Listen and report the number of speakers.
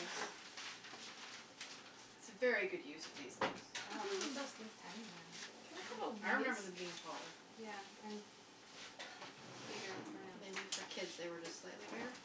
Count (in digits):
3